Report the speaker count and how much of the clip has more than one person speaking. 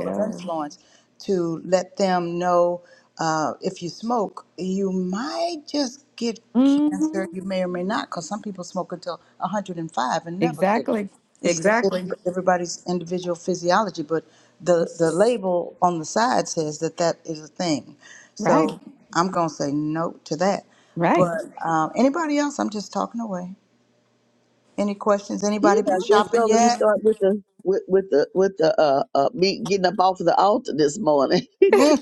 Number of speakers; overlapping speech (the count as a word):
three, about 12%